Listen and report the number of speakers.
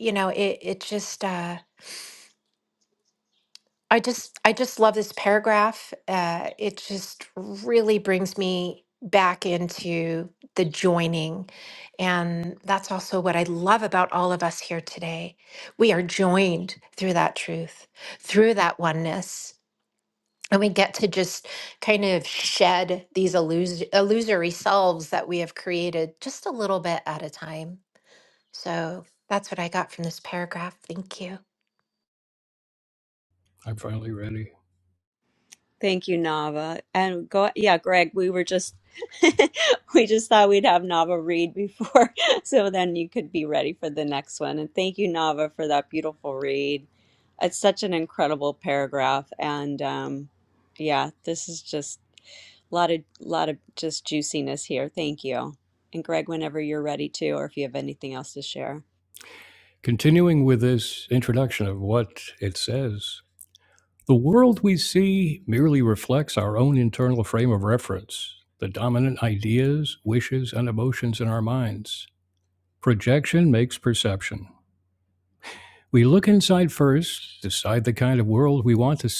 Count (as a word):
three